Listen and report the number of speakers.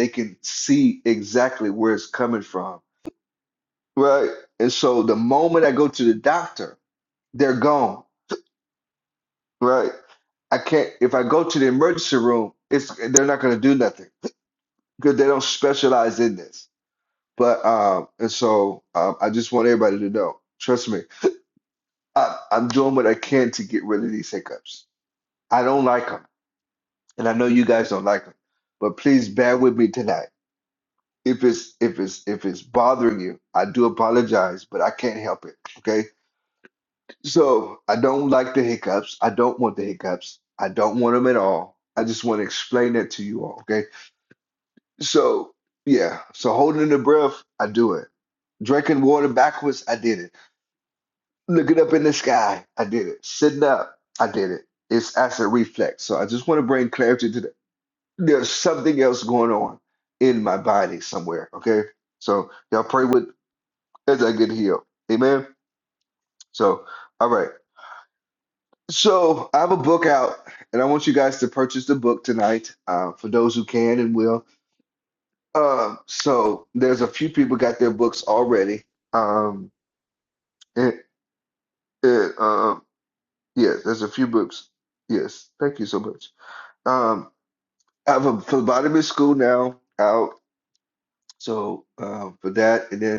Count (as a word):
one